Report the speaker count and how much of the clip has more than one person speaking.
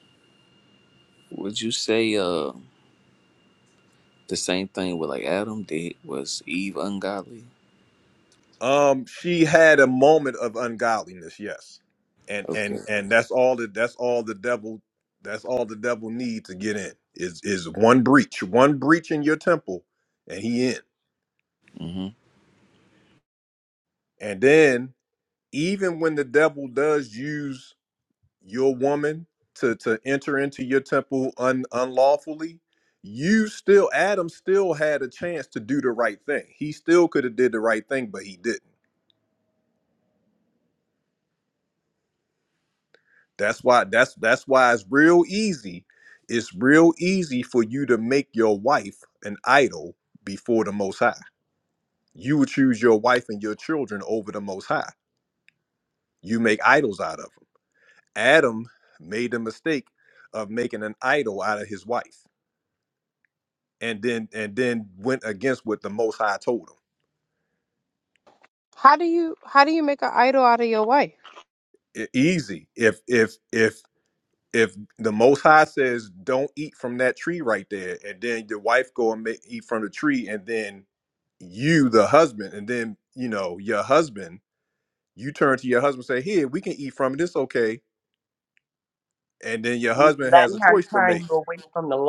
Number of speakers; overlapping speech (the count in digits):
4, about 2%